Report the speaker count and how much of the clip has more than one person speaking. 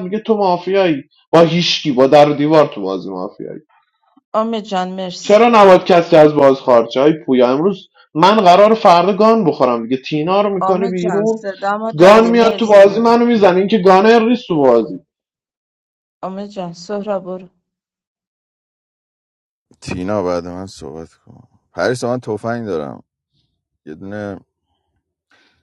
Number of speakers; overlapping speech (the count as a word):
three, about 7%